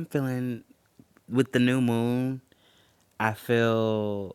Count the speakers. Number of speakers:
1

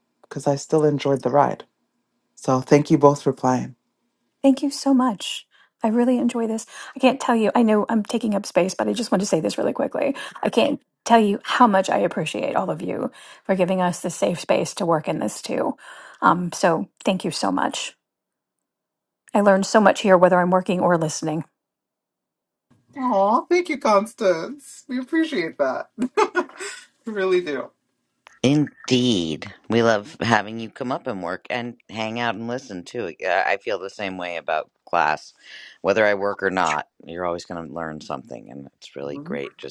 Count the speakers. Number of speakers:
3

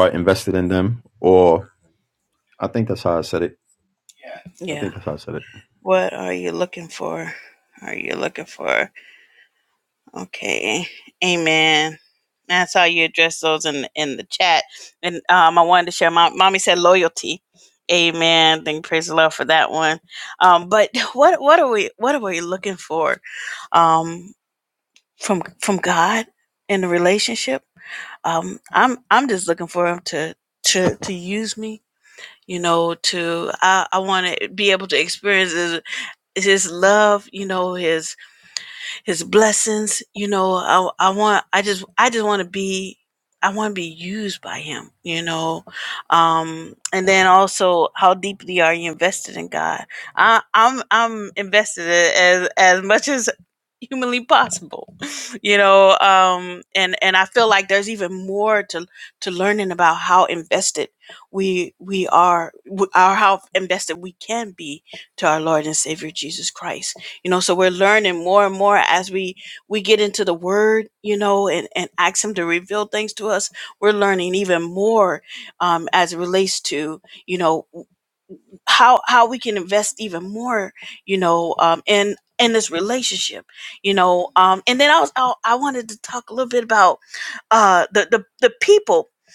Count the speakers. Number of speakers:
2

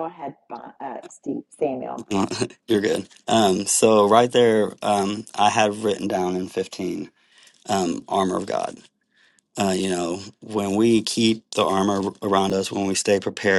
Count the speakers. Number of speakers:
2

